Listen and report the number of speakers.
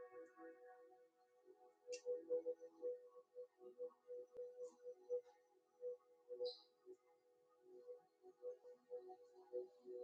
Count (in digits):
0